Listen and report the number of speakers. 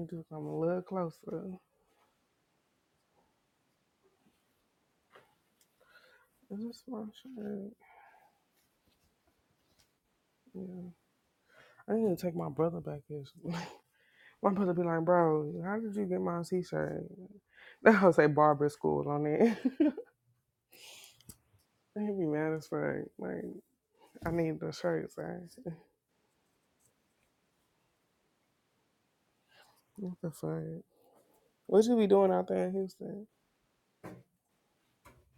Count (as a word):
one